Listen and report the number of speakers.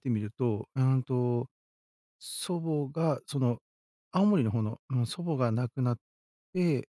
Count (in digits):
1